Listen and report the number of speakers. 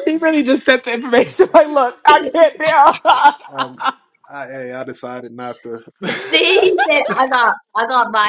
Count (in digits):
3